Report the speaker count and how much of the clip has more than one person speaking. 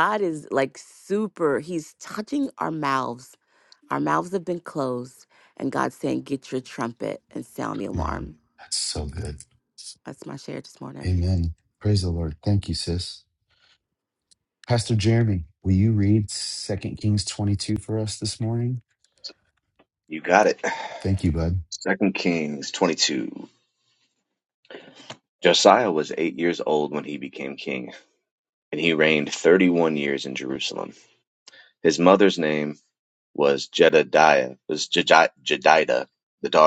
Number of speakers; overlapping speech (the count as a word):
three, about 1%